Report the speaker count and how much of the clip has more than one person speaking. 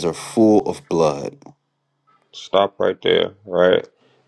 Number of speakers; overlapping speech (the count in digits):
2, no overlap